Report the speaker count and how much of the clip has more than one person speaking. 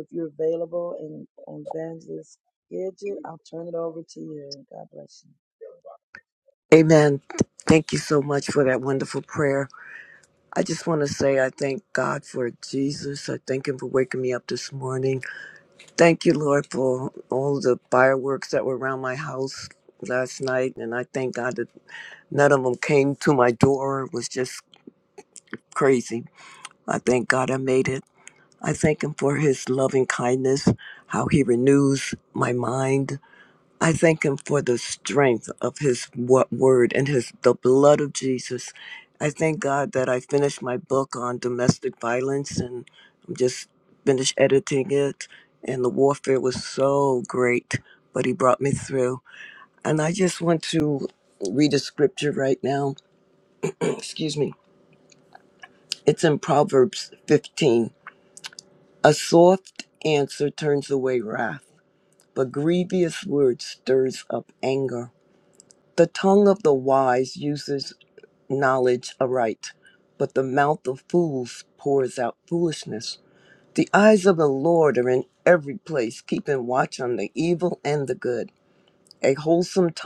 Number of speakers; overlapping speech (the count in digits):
2, no overlap